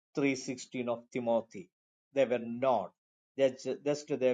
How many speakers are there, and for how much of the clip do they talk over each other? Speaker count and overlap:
1, no overlap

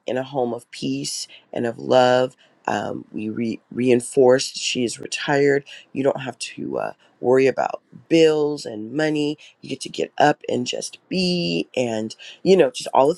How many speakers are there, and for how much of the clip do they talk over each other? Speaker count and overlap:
1, no overlap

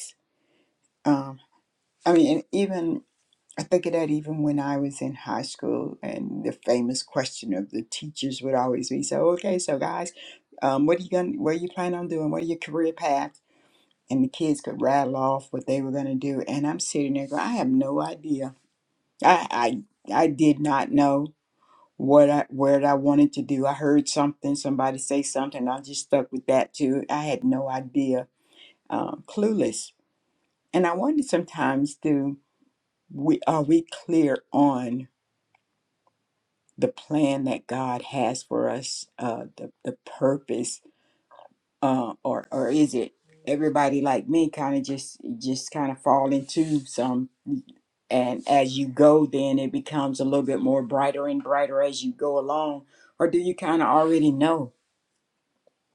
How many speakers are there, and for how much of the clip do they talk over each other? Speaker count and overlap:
1, no overlap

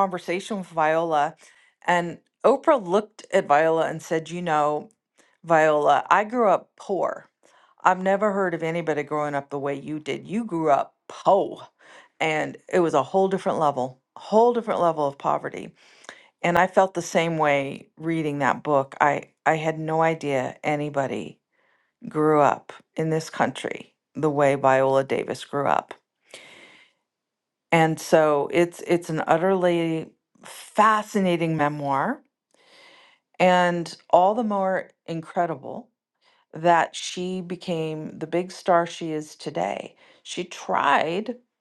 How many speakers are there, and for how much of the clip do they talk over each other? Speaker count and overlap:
1, no overlap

